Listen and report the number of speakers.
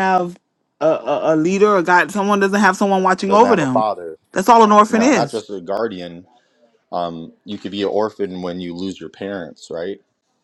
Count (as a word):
two